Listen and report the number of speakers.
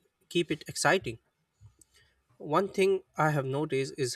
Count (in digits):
1